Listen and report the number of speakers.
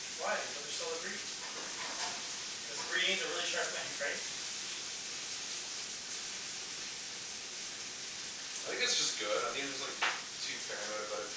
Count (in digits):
2